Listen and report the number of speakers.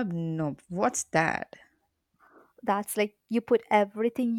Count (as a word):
two